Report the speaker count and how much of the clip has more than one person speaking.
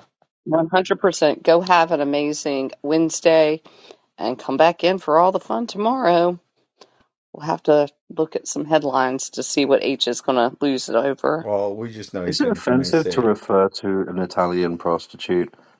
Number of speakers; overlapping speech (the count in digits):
3, about 7%